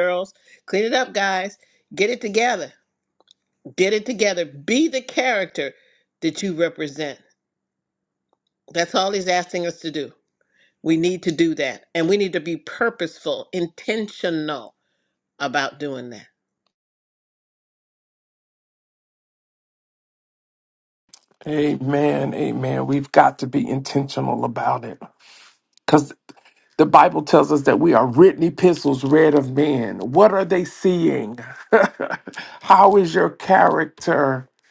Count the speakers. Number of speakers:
two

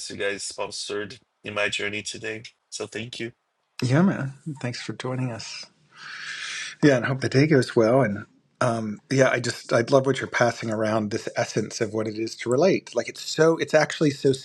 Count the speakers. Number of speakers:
two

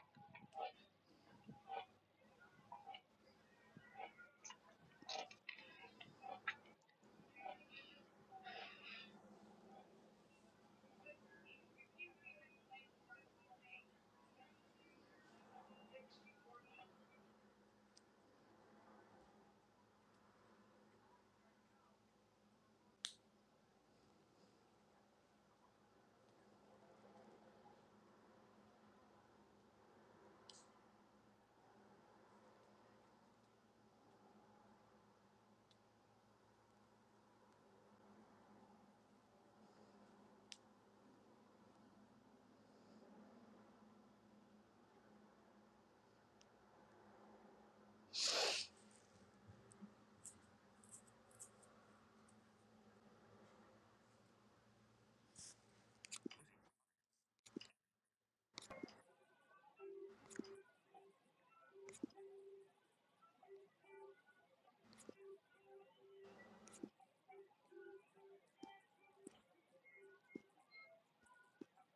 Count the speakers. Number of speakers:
zero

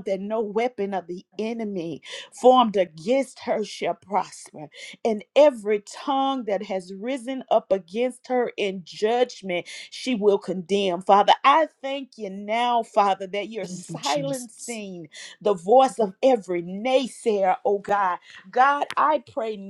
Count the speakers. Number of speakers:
one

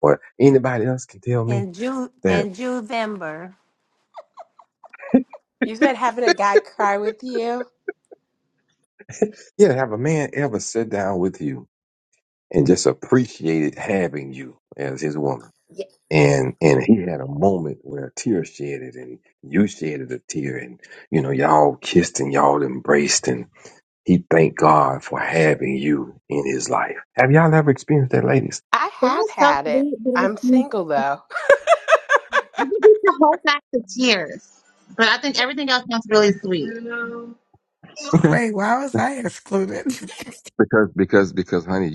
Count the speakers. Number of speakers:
five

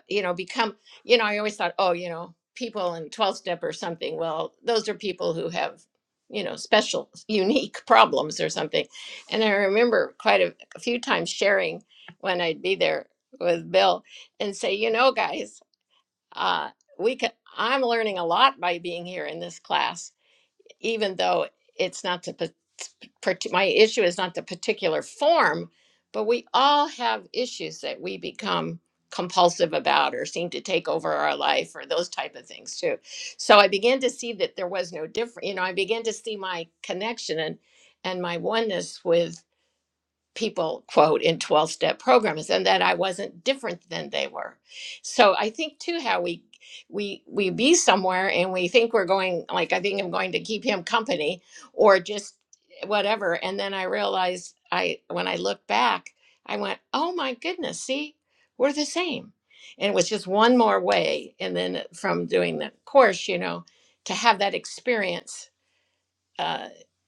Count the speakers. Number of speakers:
one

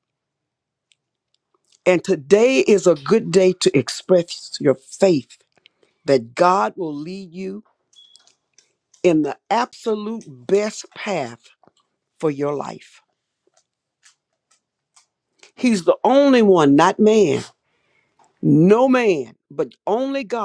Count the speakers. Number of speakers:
one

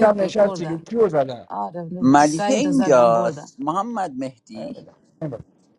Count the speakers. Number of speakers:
three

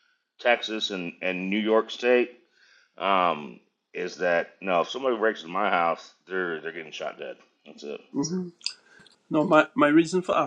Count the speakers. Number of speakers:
two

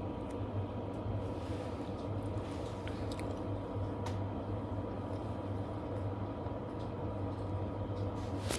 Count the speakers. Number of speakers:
zero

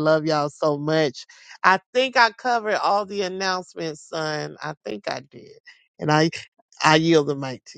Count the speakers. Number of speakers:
one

